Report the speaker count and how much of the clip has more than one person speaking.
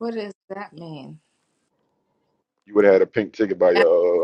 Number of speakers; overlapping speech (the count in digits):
2, about 2%